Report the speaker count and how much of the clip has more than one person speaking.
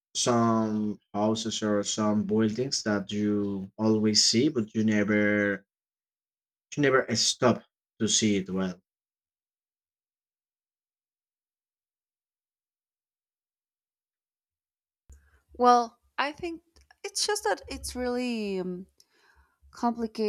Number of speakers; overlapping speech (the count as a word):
two, no overlap